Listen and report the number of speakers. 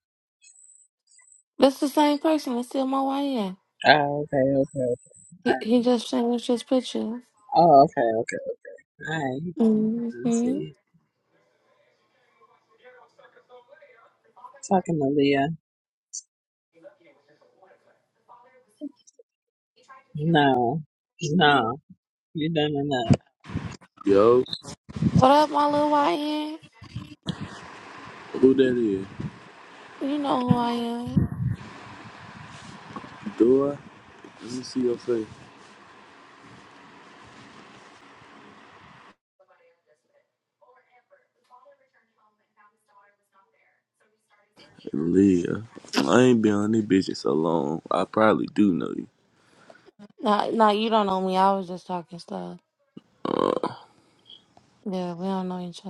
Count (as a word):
three